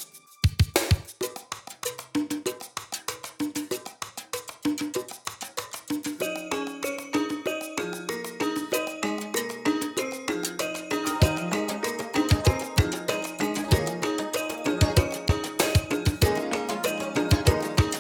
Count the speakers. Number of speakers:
0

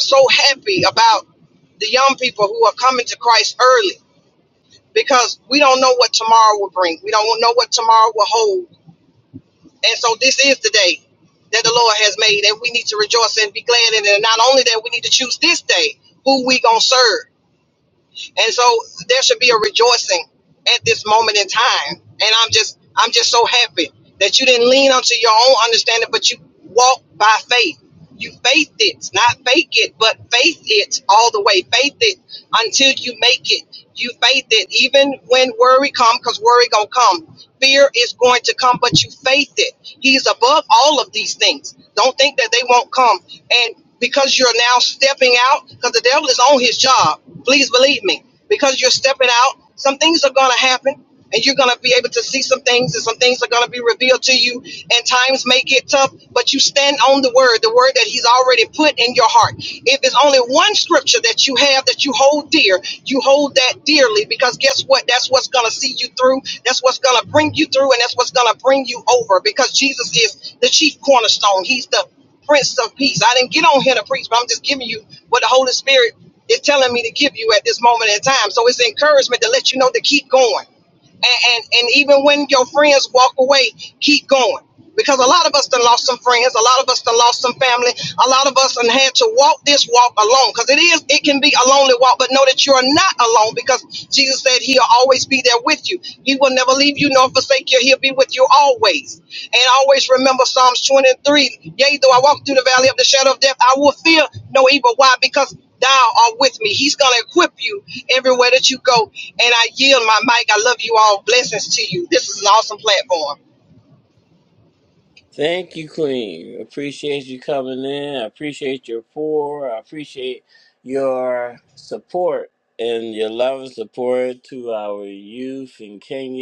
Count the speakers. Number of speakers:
2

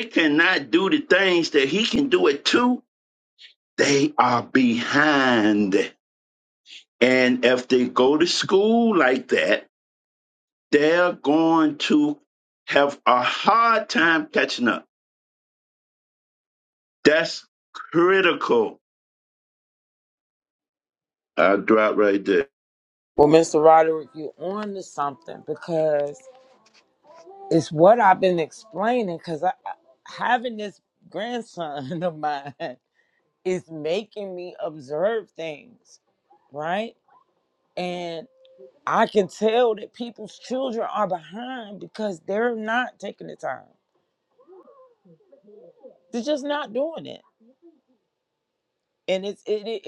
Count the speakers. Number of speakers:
2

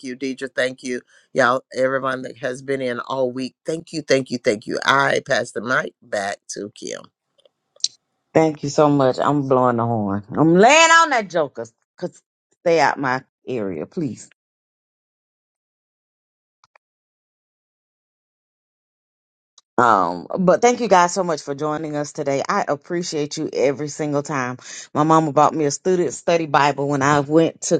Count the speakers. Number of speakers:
2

